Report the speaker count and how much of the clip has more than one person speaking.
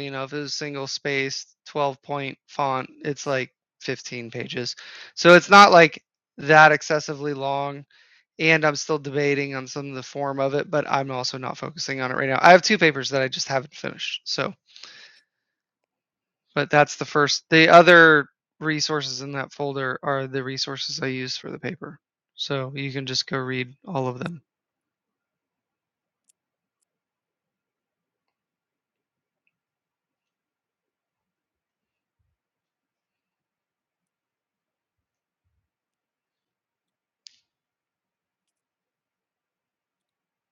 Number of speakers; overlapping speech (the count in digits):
1, no overlap